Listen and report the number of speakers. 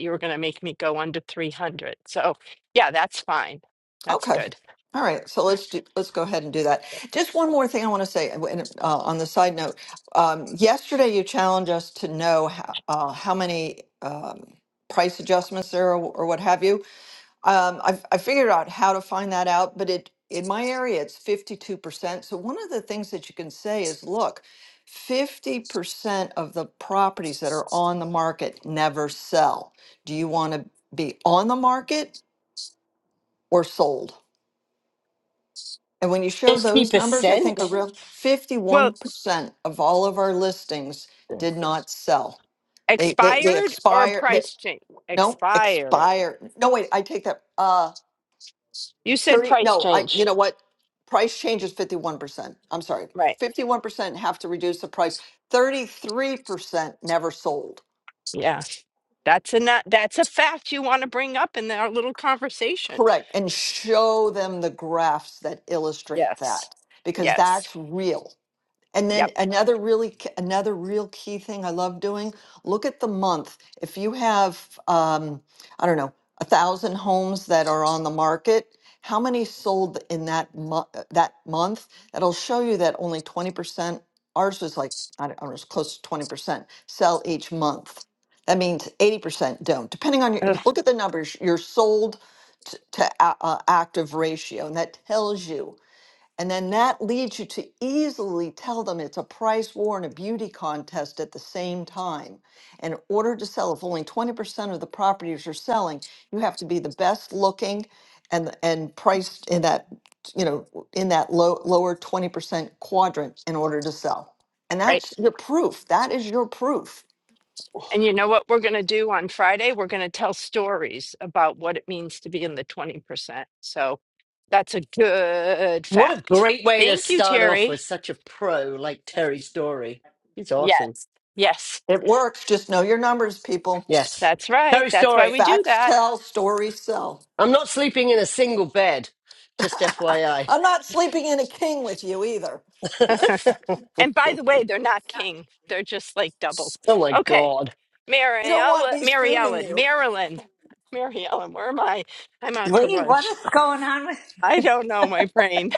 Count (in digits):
4